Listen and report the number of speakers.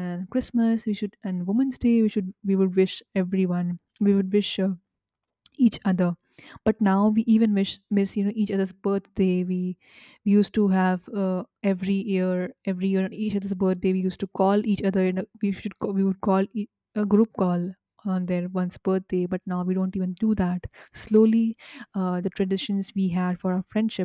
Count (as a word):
one